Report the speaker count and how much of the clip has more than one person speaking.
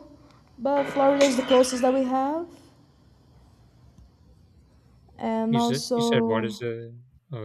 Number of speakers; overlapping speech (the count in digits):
2, about 14%